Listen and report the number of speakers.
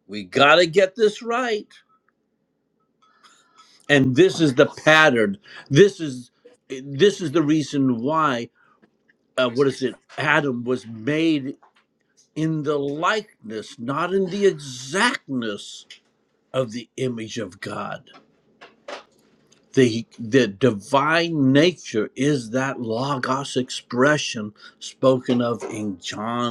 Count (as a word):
one